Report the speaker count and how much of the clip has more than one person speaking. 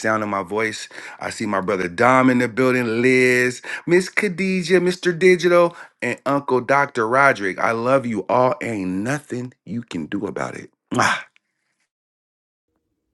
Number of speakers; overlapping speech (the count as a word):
one, no overlap